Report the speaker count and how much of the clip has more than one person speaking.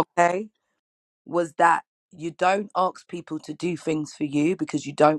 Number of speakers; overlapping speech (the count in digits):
1, no overlap